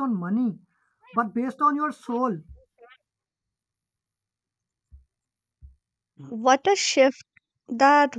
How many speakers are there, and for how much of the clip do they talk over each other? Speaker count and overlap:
two, no overlap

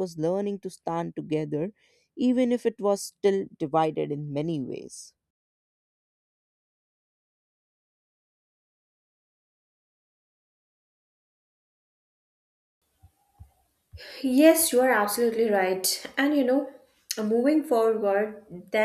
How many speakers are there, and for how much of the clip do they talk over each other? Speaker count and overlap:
two, no overlap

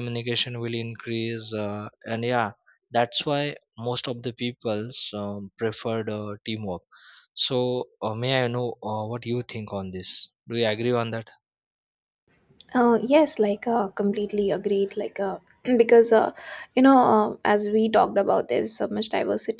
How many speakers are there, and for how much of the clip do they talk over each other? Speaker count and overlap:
two, no overlap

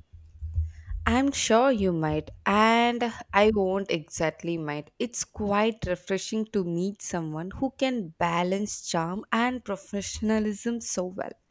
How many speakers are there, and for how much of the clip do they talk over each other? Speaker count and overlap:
one, no overlap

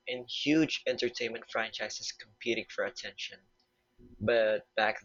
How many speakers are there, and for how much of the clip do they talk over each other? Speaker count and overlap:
one, no overlap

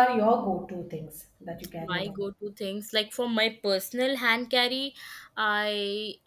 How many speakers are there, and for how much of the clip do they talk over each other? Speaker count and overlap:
two, about 5%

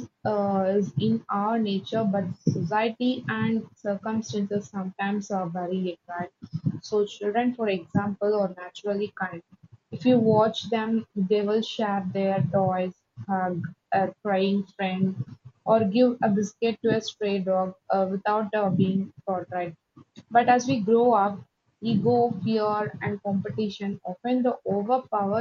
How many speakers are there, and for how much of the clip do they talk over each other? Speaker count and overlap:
one, no overlap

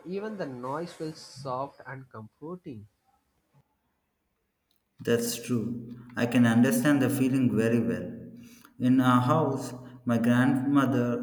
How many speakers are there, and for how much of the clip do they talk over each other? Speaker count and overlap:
two, no overlap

